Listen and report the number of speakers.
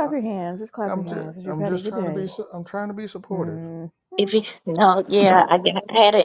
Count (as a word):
three